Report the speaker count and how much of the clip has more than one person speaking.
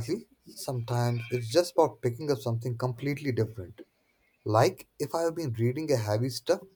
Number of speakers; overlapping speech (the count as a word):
one, no overlap